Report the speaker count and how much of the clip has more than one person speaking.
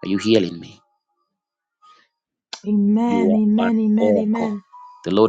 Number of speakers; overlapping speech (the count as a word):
two, about 28%